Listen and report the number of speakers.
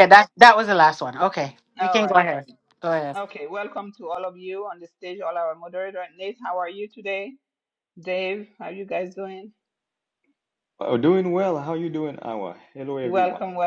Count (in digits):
3